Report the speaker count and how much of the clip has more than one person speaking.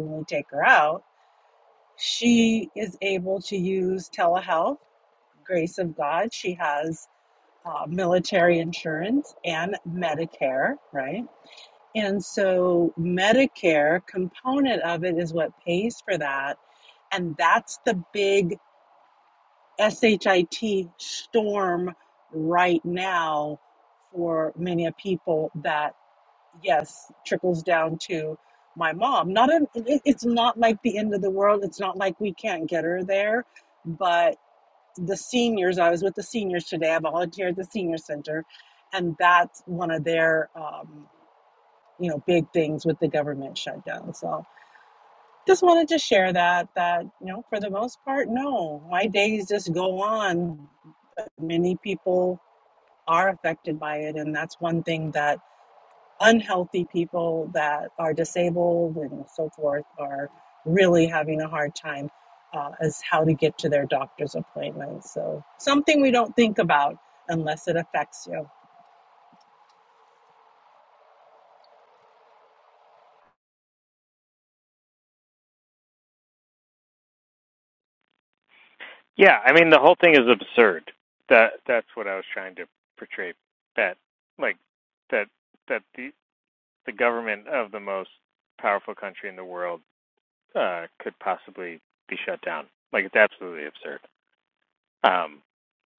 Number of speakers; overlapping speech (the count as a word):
two, no overlap